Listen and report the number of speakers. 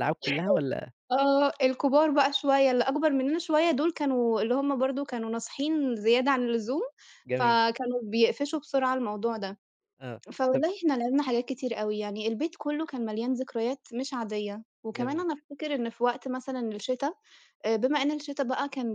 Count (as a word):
two